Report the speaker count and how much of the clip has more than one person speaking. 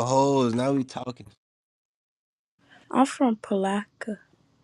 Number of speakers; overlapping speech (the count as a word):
two, no overlap